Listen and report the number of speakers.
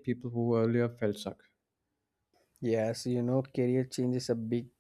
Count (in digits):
2